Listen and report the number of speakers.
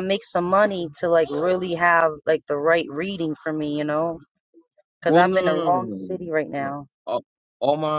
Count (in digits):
2